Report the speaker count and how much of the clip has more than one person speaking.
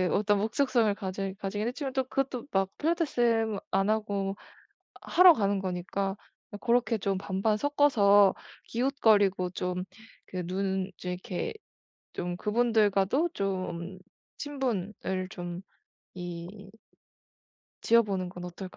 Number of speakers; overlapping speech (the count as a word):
one, no overlap